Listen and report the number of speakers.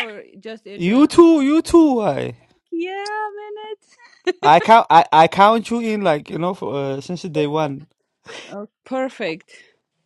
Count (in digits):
2